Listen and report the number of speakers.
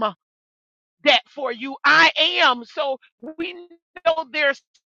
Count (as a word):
one